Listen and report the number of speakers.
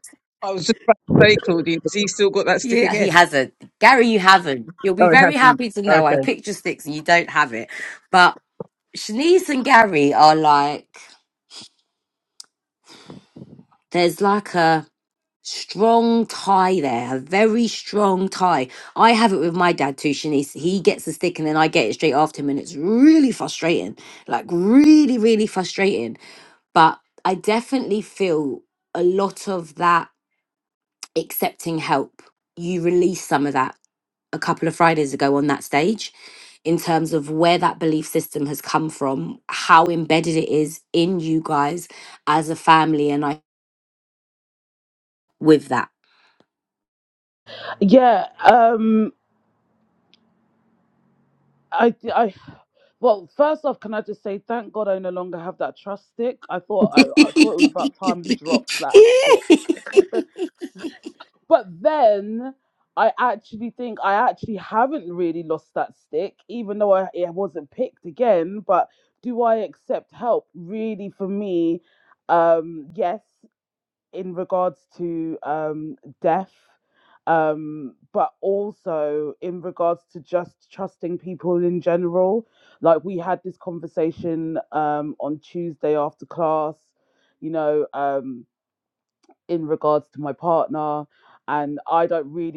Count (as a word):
three